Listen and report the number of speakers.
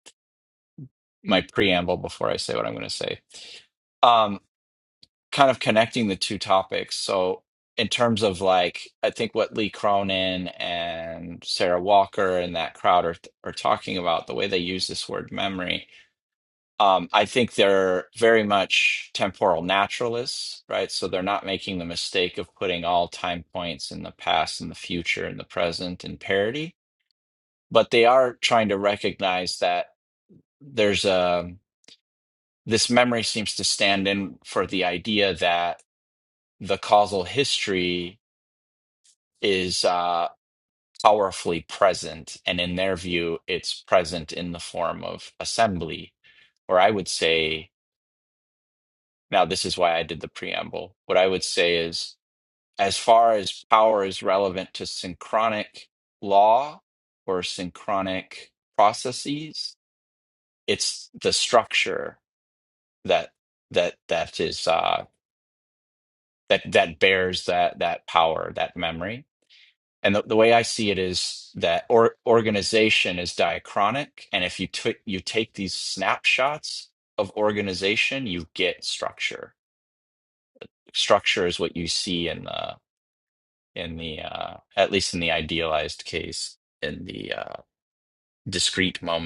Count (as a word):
one